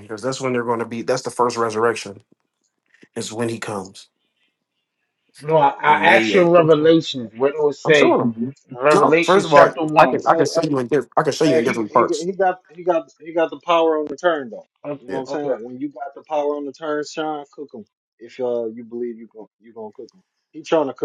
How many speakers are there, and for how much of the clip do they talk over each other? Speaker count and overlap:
3, about 17%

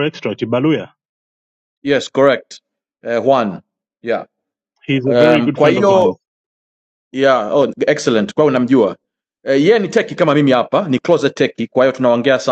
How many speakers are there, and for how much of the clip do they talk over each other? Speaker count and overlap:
2, about 9%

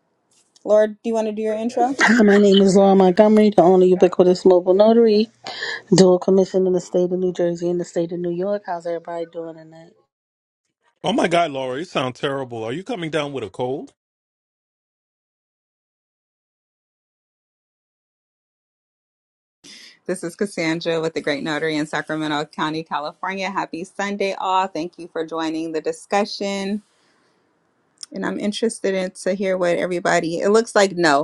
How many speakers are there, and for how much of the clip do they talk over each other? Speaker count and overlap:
3, no overlap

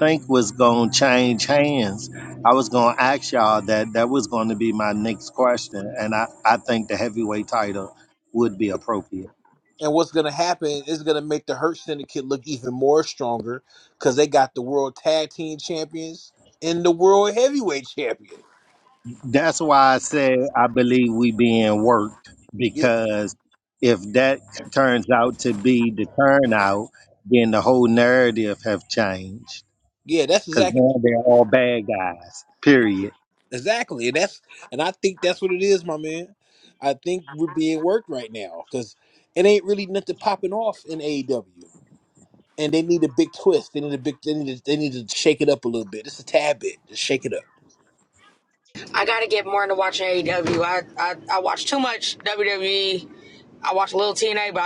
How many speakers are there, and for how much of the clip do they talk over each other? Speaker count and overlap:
3, about 1%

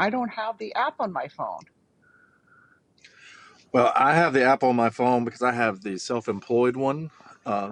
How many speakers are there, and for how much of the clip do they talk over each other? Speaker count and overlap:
2, no overlap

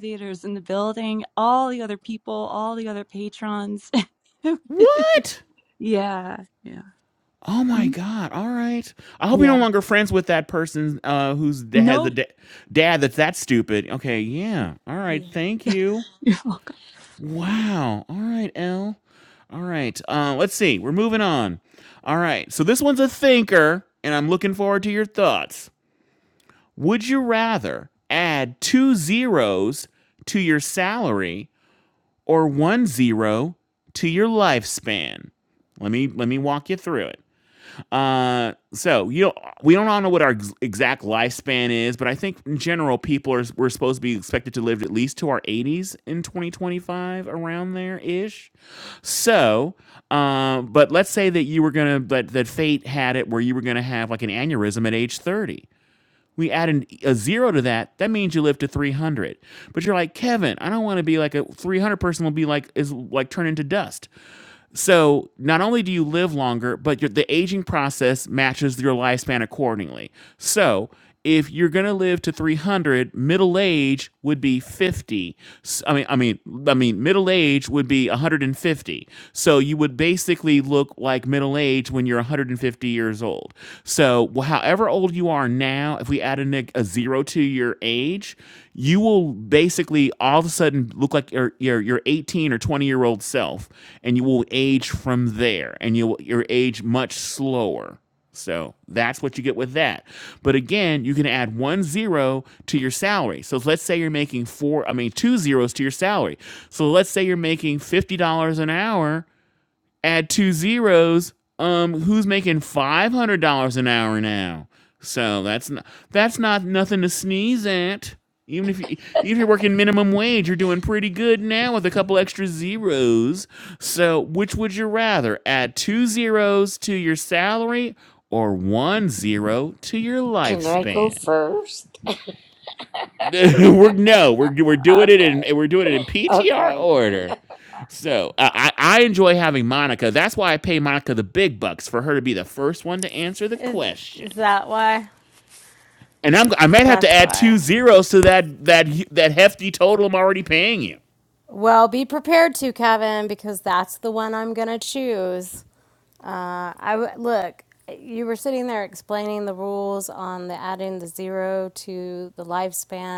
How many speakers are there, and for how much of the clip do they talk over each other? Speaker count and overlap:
4, about 3%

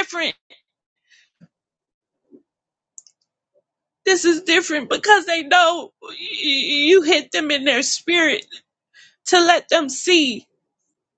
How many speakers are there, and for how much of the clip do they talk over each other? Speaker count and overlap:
1, no overlap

